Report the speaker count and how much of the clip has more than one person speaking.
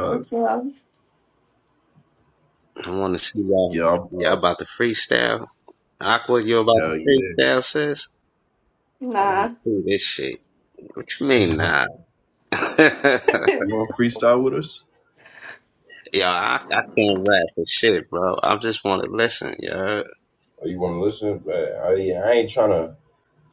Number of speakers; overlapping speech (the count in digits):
3, about 7%